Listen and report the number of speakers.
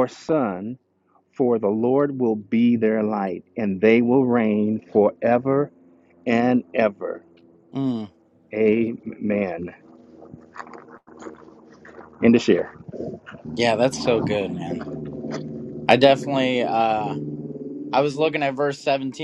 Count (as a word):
two